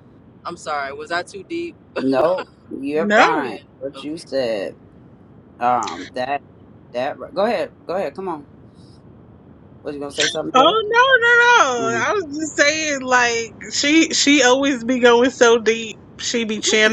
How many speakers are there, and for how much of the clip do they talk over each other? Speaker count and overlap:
3, about 8%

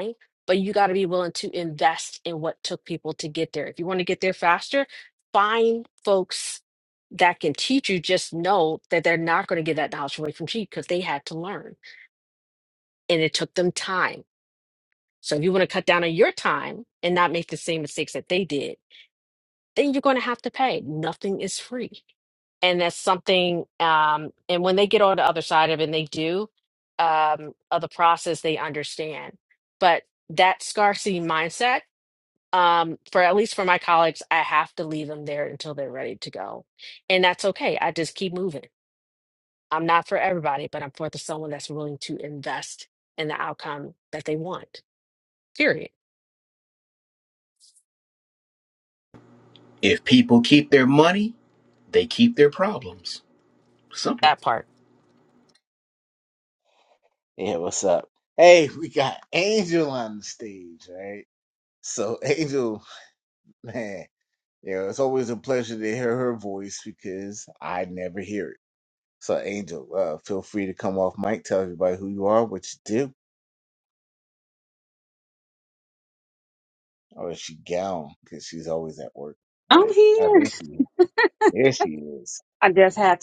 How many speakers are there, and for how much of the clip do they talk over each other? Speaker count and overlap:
4, about 1%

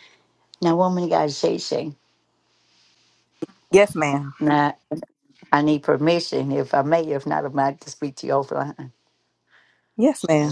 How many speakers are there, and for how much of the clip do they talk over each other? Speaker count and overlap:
2, about 1%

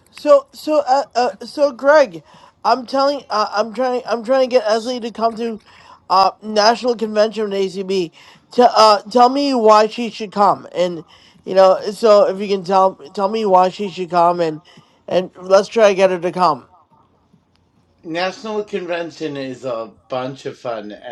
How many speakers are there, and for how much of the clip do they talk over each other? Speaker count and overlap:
2, no overlap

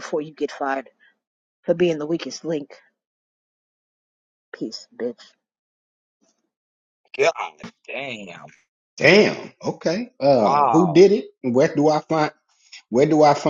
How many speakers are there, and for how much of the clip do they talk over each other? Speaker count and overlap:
3, about 4%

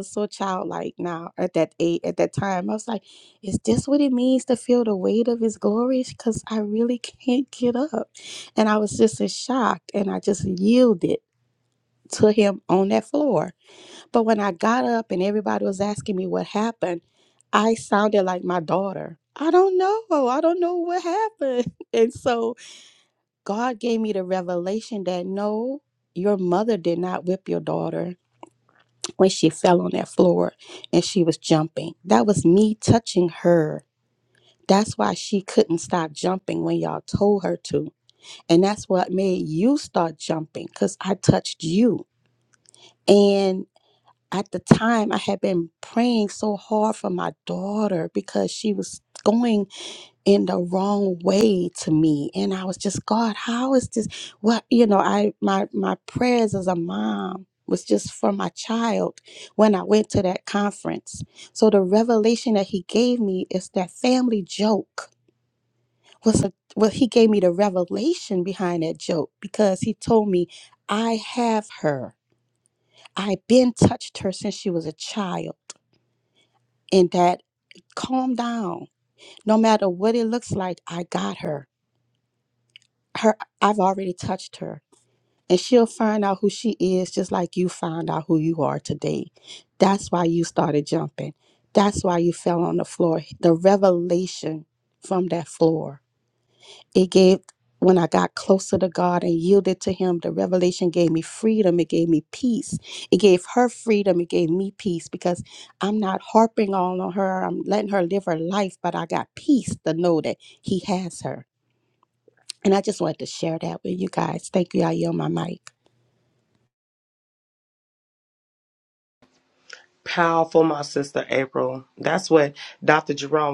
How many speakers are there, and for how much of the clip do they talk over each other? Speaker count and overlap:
2, no overlap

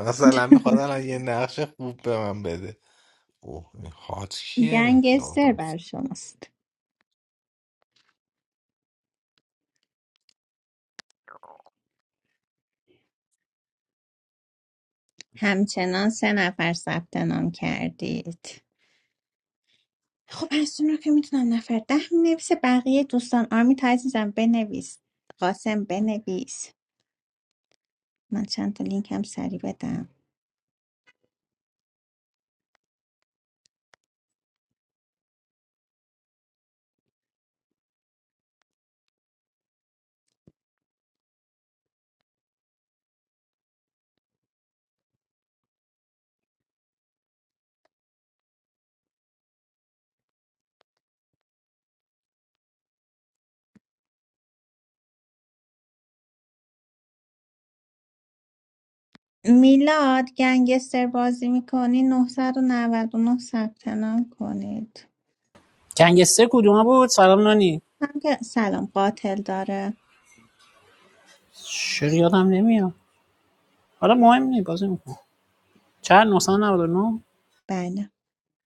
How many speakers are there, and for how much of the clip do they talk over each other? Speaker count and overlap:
3, about 1%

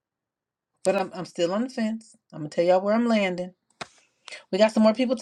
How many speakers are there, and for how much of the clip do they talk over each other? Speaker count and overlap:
1, no overlap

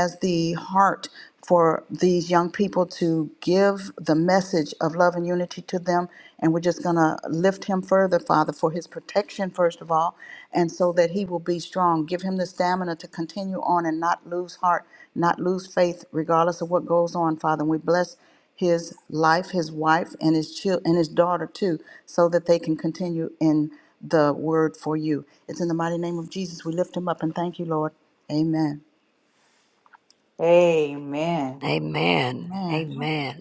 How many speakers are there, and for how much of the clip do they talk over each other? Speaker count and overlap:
3, about 1%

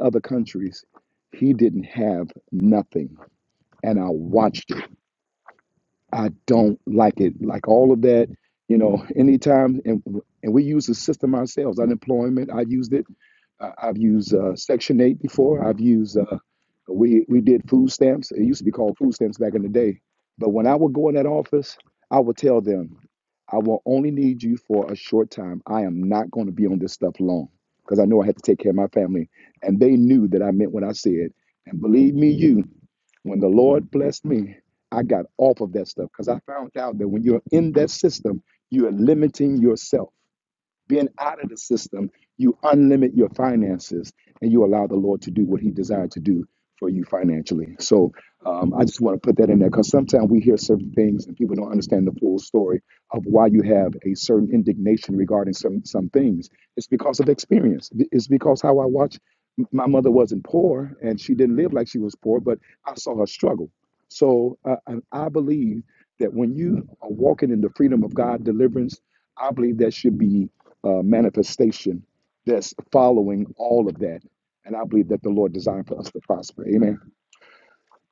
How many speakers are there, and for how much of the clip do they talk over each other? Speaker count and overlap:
1, no overlap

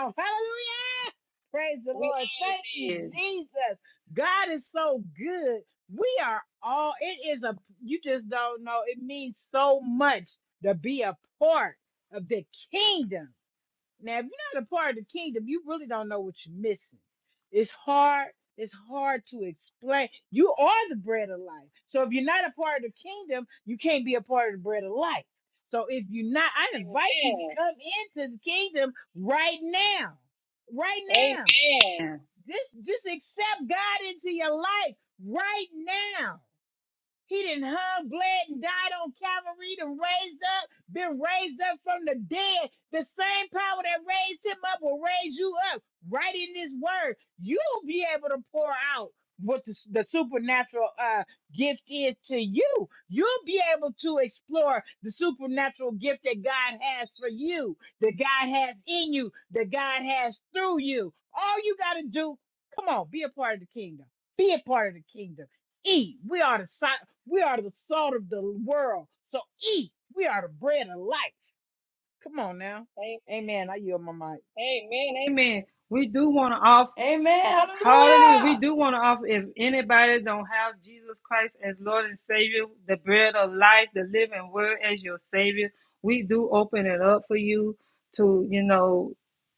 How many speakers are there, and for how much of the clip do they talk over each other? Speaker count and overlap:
3, about 3%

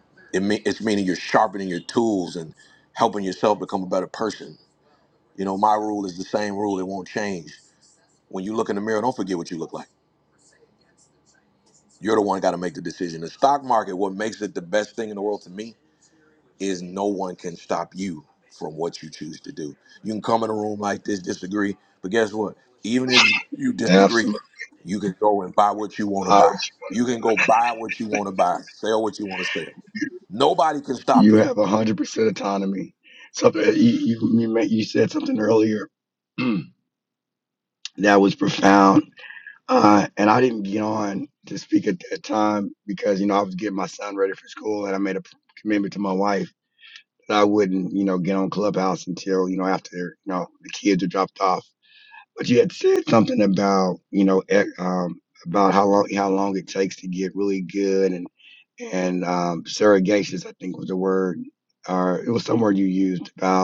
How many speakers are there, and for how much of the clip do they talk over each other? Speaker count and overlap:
2, about 2%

